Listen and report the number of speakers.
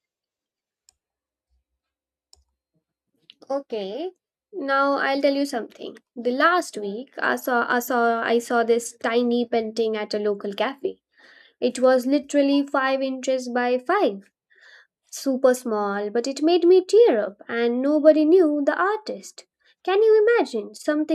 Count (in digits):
1